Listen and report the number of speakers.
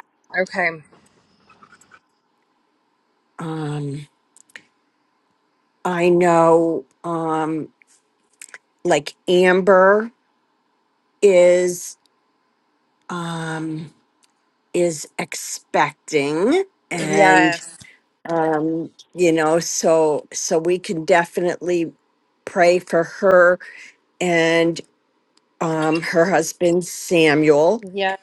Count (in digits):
2